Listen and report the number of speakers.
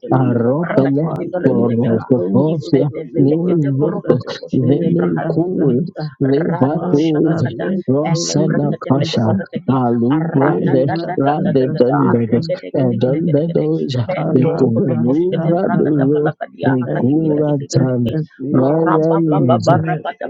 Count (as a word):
three